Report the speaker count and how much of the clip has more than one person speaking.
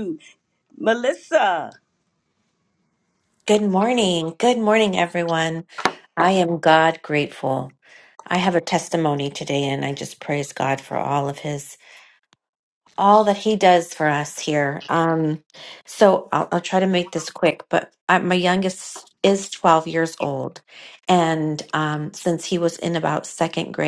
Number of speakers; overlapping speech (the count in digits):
2, no overlap